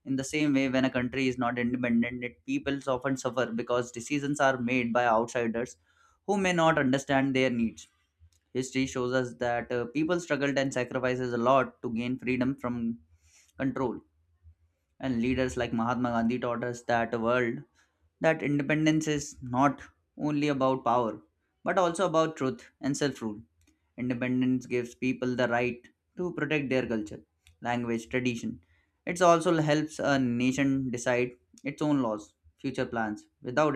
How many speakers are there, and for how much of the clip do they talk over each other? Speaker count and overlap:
1, no overlap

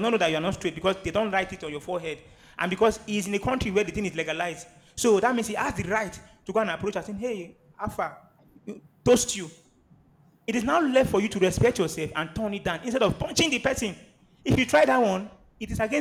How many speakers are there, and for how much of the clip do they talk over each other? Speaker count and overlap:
1, no overlap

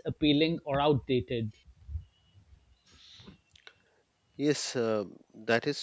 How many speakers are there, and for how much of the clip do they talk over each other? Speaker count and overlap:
2, no overlap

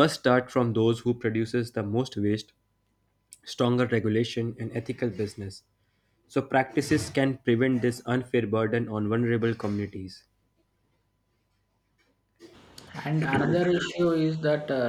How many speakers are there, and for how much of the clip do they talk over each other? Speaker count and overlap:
2, no overlap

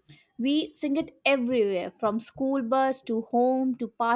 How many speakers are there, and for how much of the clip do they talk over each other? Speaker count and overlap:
1, no overlap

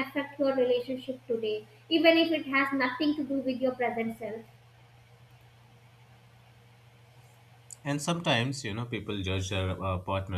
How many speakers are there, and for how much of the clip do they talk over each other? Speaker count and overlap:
2, no overlap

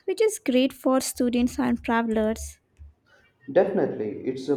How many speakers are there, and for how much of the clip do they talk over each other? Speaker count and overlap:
2, no overlap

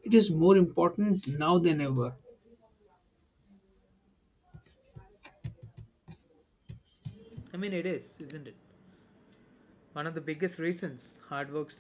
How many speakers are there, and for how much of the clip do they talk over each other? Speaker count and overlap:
2, no overlap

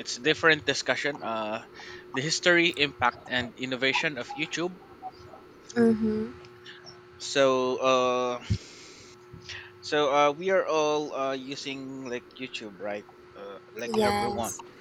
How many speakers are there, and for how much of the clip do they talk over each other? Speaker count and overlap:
2, about 4%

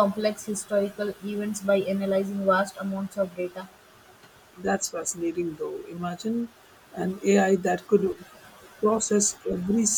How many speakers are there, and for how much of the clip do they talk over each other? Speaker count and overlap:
2, no overlap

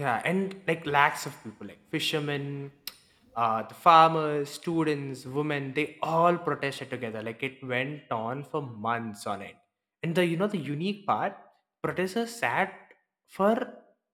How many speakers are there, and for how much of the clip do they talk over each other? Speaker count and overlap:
1, no overlap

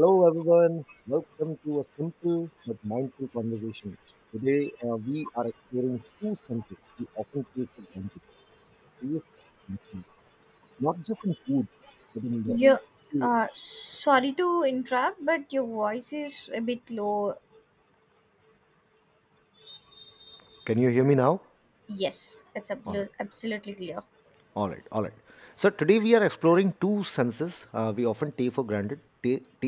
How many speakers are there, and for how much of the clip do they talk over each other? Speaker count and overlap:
2, about 1%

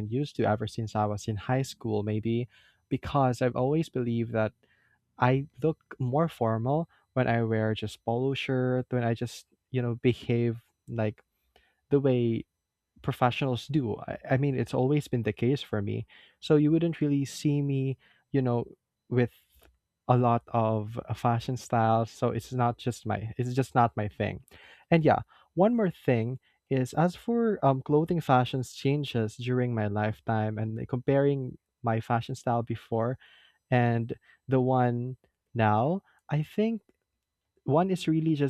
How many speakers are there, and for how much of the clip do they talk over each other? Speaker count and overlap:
1, no overlap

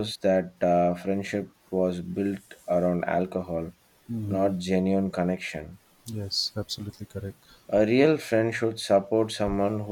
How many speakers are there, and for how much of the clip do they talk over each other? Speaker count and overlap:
2, about 3%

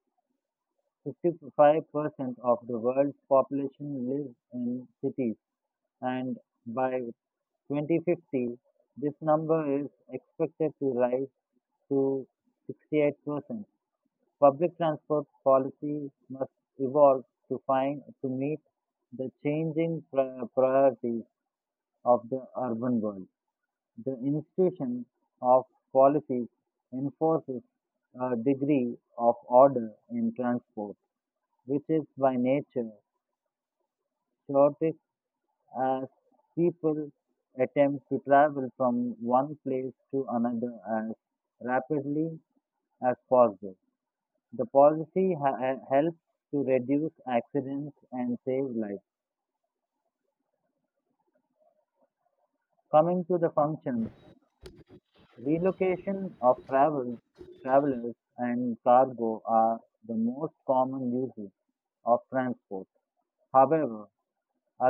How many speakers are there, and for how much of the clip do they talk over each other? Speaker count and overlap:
1, no overlap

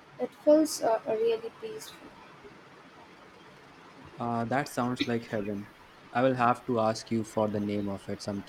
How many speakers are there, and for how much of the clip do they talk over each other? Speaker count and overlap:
2, no overlap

